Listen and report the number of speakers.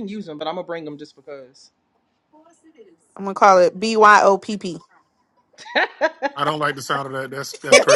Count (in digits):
3